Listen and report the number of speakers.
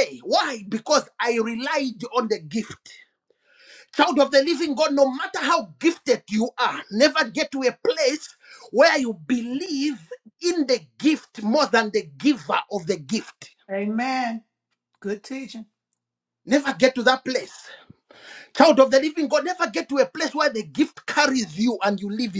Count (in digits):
2